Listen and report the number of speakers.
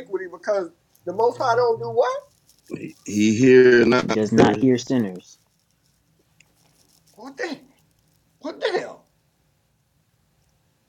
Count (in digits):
3